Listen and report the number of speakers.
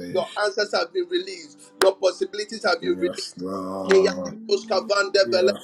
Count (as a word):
three